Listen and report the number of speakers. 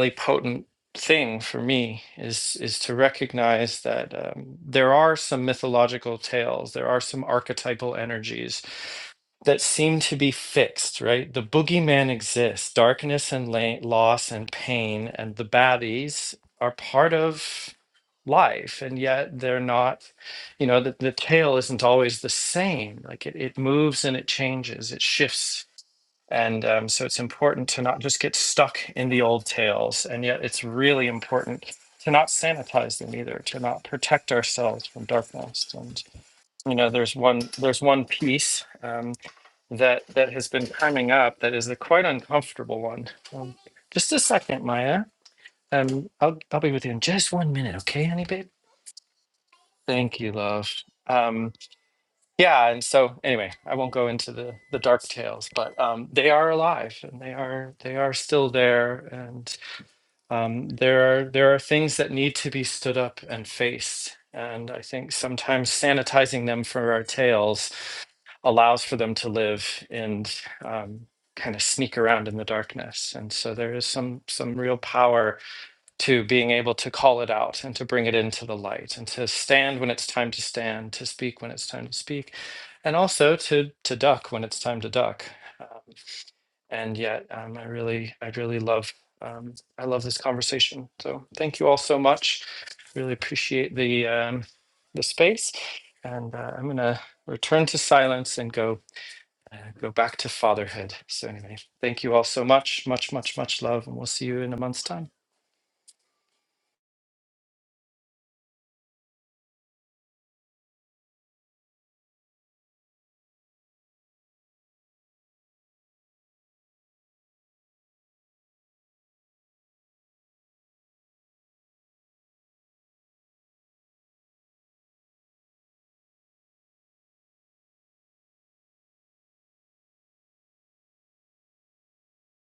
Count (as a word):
one